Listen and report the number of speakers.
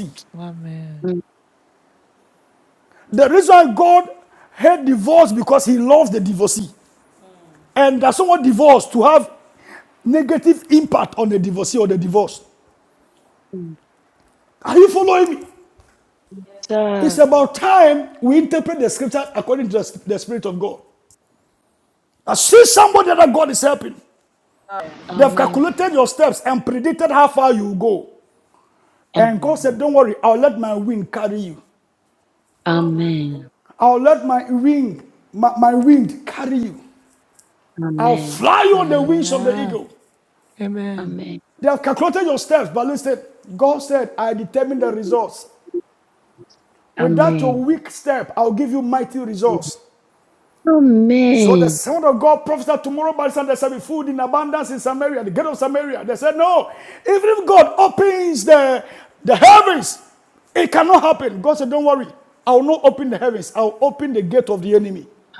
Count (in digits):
3